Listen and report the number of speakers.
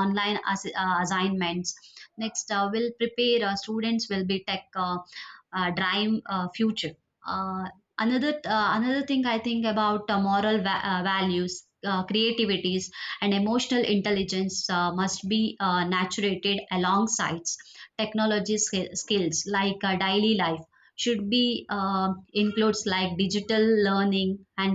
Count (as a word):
one